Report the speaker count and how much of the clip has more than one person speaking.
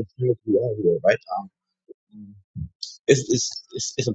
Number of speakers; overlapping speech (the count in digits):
1, no overlap